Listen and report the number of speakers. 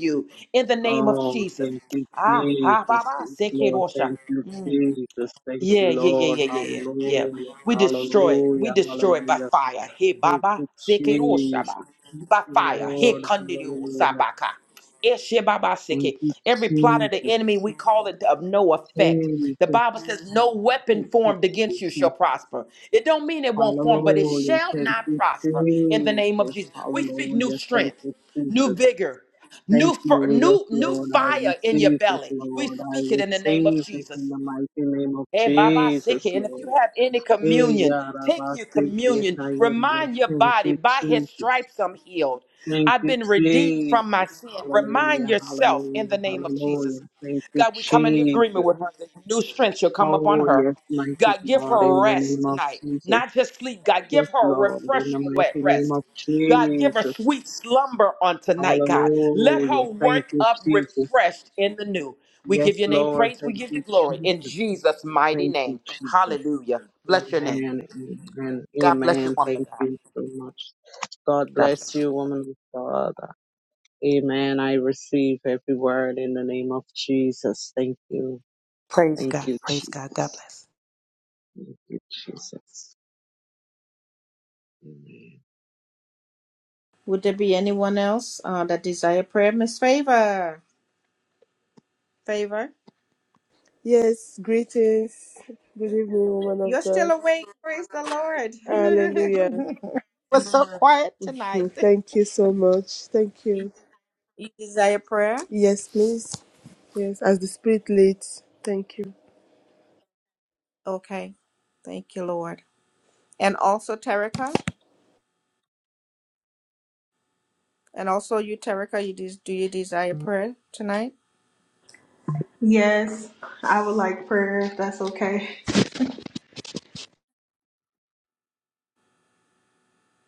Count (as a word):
five